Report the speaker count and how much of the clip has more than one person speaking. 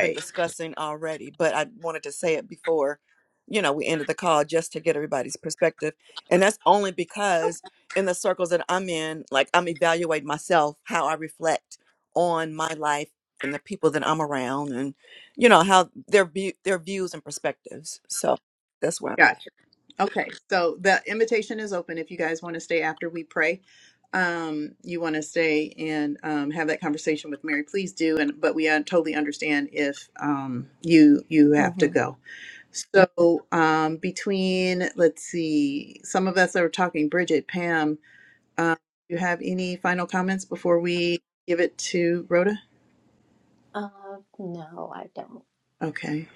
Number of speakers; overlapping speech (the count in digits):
3, about 1%